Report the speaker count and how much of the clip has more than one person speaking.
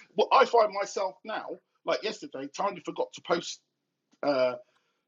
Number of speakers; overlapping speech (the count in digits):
1, no overlap